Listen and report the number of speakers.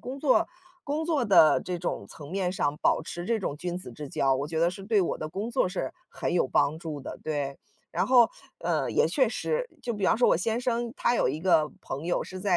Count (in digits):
1